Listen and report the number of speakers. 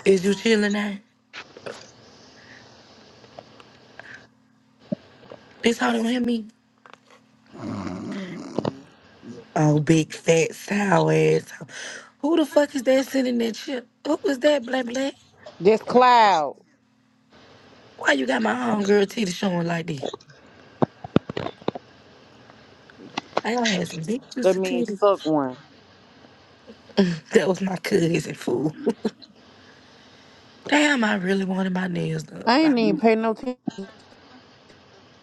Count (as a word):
two